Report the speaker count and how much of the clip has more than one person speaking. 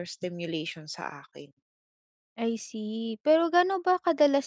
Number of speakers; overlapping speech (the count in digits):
2, no overlap